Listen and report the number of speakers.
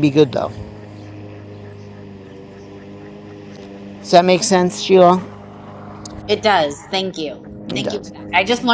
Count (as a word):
two